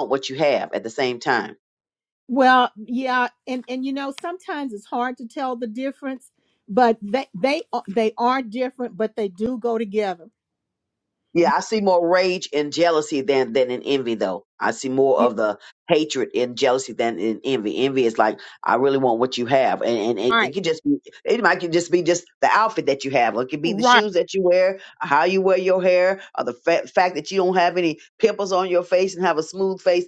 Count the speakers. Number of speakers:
two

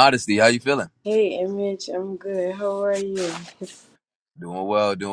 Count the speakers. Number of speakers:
two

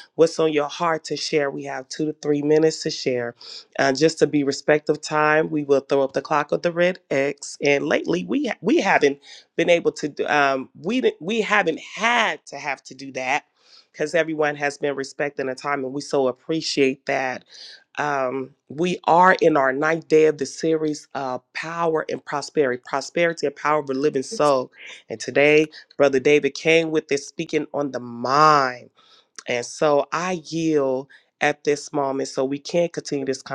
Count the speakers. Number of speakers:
one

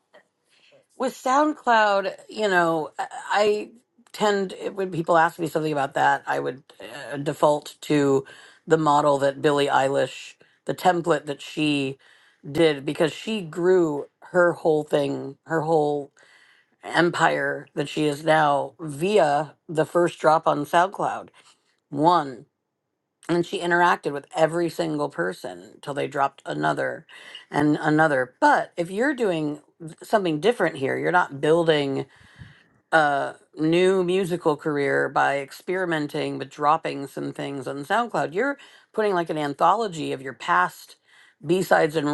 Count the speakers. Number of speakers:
one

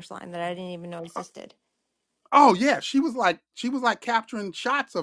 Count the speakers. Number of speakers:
two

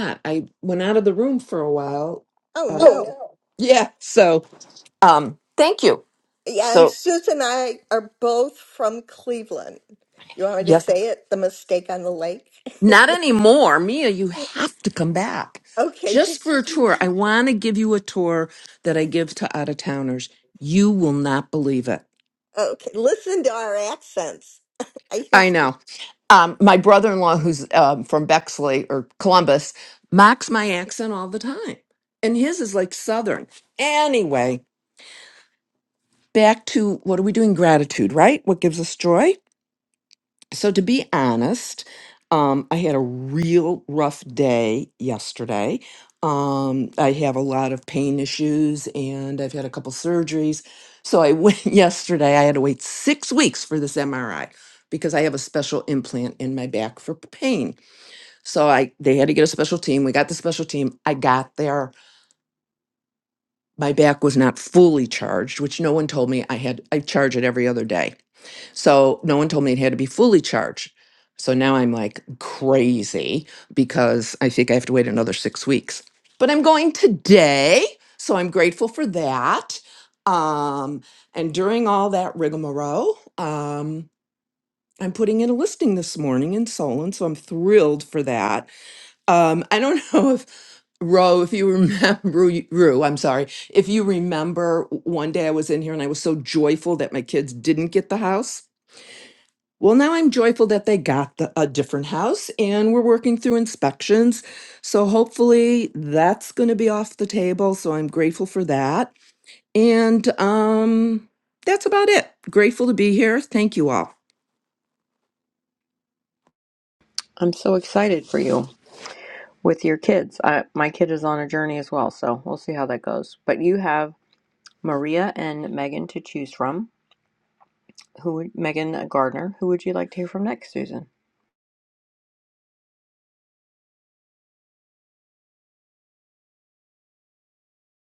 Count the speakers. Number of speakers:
three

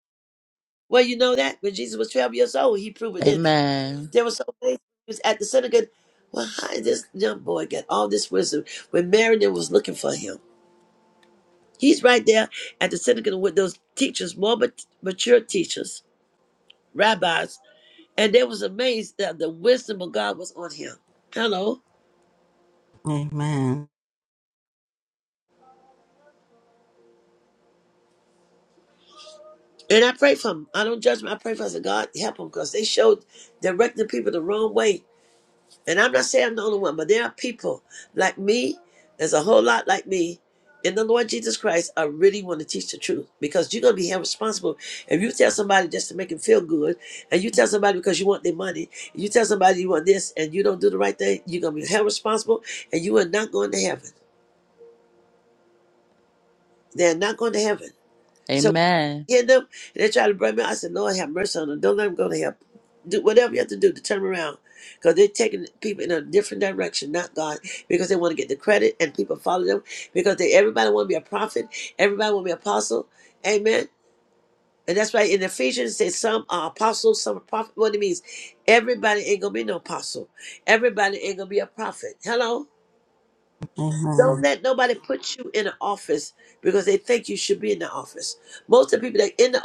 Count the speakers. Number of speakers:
three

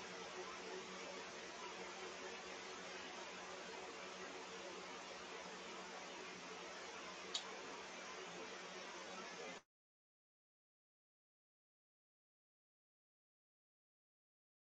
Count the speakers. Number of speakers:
zero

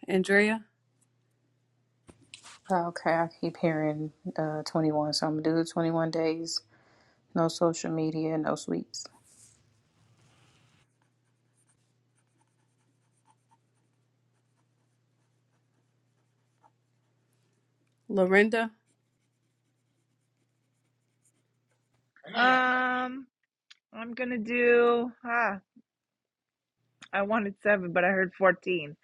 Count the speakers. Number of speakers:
three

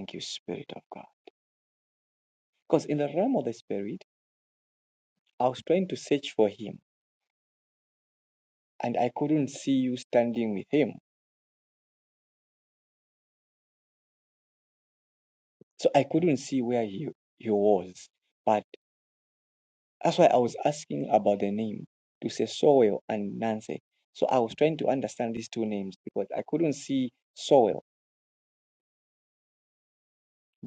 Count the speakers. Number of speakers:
one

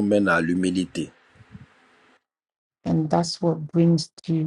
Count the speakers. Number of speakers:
two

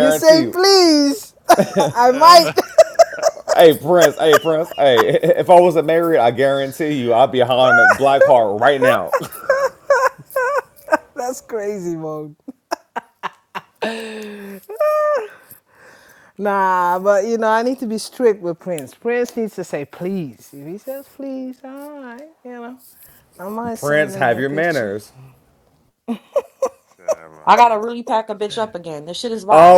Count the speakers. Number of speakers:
four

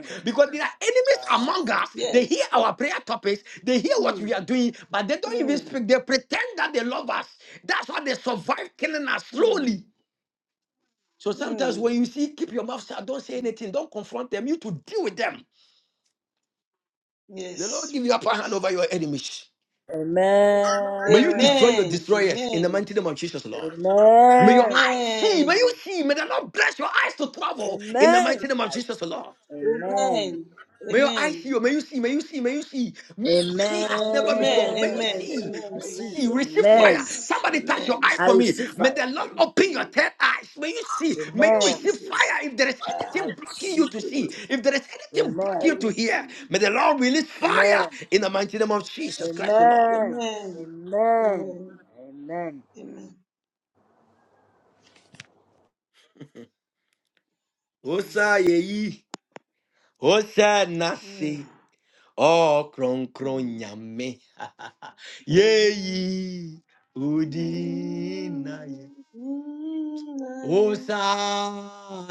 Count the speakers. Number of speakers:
three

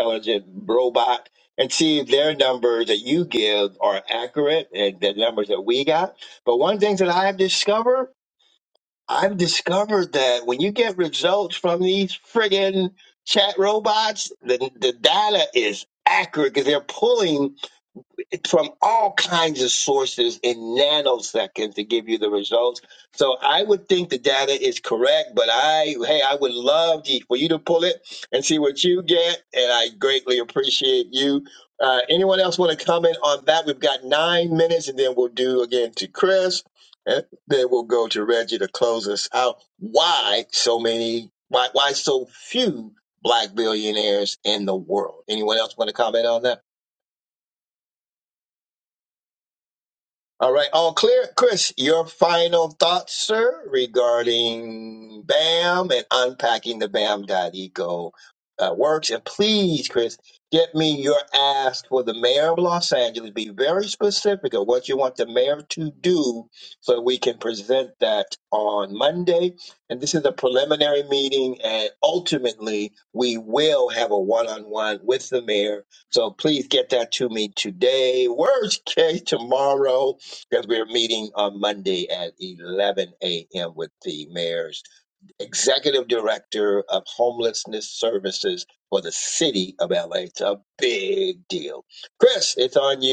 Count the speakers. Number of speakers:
one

